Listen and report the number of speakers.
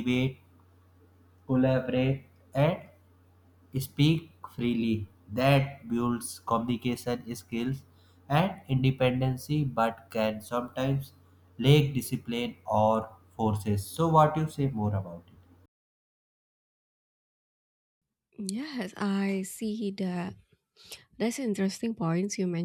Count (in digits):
2